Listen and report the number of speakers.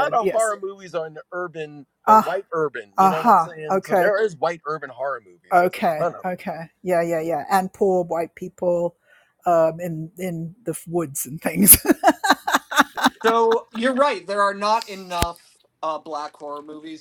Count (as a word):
three